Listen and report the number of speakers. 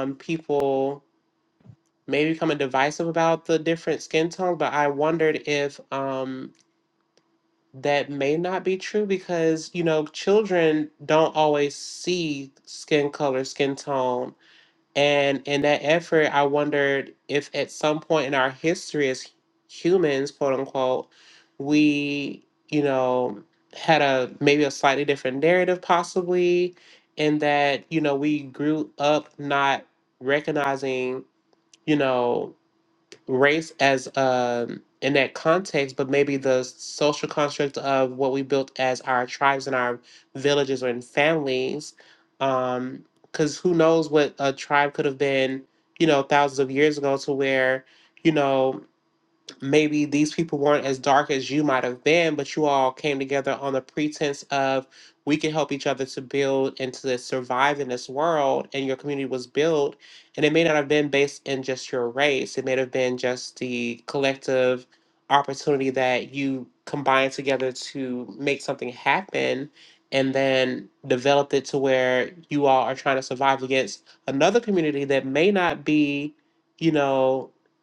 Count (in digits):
1